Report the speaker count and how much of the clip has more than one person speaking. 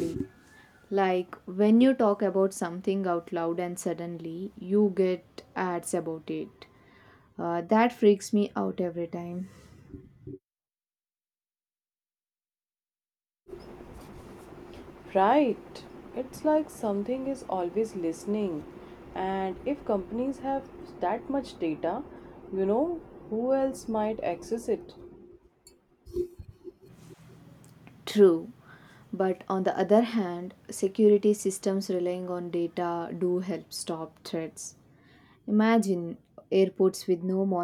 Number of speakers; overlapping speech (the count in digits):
2, no overlap